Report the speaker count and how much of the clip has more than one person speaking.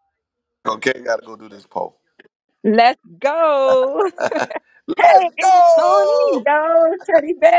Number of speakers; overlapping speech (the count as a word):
two, about 13%